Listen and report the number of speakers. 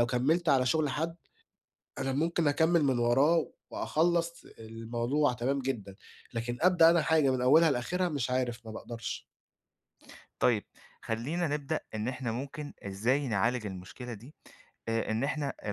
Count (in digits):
2